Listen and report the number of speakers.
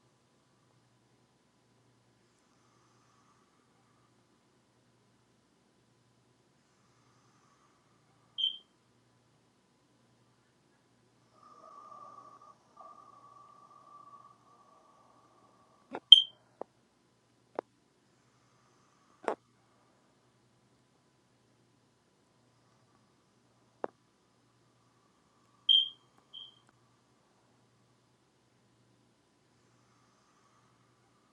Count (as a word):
zero